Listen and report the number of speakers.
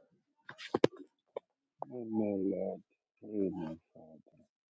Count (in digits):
1